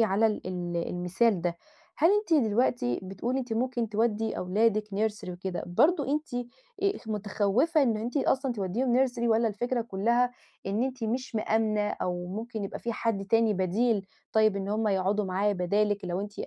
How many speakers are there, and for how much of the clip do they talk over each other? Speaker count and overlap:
one, no overlap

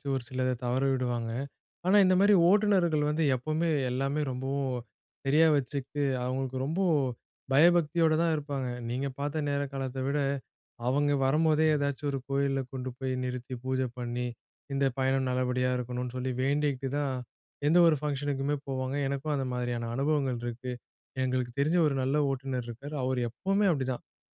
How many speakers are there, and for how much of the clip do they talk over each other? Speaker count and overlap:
one, no overlap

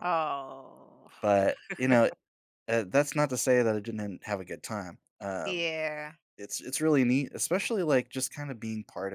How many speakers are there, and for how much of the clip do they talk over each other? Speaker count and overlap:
two, about 2%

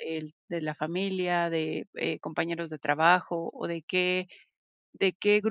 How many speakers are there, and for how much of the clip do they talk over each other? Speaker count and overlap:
one, no overlap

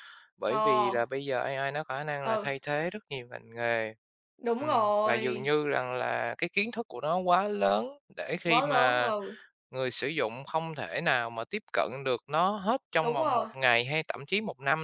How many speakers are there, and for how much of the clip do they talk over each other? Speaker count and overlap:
two, about 19%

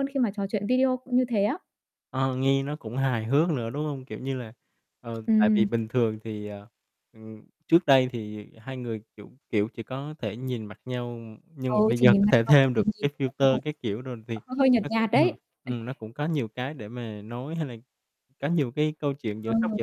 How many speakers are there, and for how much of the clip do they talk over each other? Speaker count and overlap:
two, about 14%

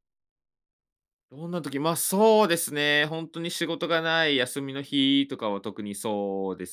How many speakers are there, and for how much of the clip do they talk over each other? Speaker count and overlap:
one, no overlap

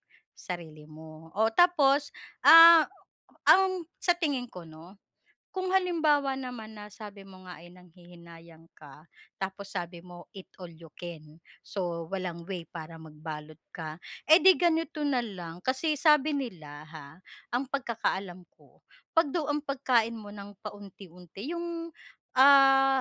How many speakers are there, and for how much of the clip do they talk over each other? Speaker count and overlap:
one, no overlap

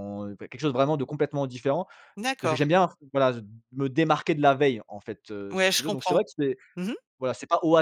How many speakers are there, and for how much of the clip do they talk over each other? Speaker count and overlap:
two, about 12%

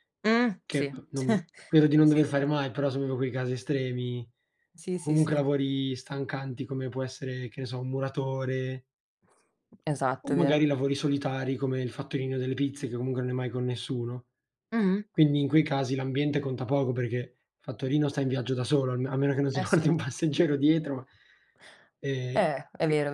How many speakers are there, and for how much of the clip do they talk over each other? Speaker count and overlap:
two, about 8%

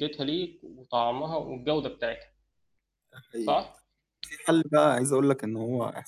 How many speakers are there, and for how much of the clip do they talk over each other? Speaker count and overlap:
two, about 2%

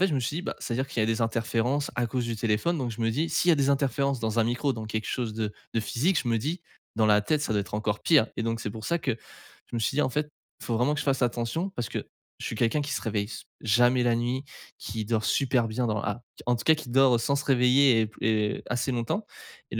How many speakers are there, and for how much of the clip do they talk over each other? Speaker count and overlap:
one, no overlap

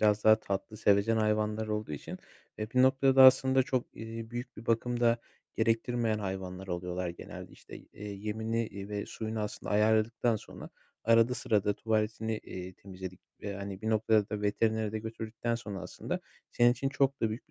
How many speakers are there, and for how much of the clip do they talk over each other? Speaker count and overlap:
one, no overlap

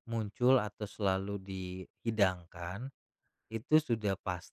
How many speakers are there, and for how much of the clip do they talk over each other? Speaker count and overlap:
one, no overlap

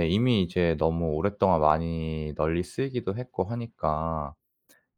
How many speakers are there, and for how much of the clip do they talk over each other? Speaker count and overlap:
one, no overlap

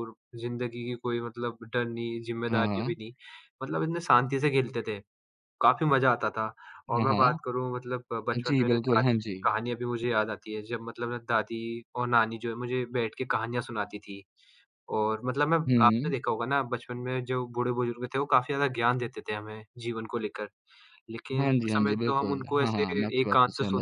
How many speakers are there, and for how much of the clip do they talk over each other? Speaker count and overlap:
two, about 19%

